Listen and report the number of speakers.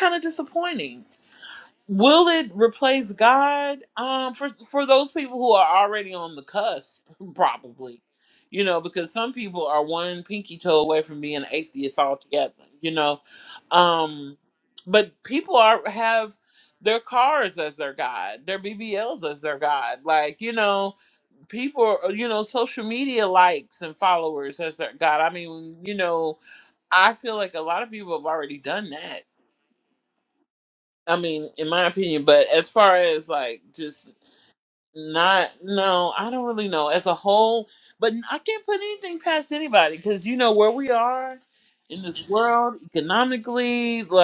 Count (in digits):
1